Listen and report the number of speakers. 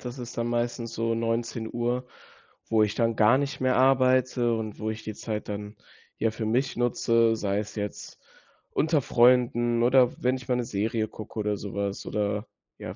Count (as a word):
one